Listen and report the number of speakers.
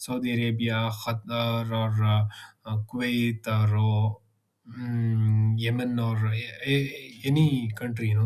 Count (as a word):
one